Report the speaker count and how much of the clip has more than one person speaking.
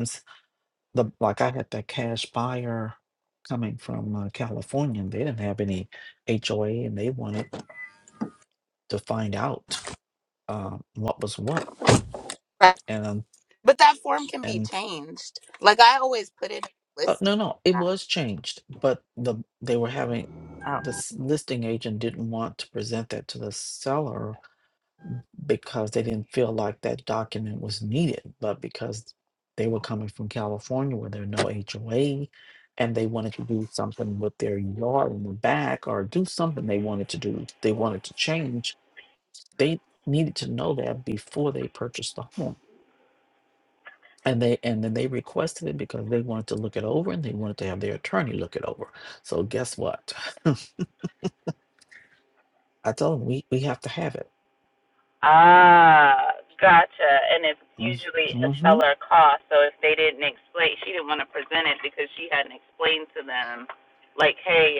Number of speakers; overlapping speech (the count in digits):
2, about 2%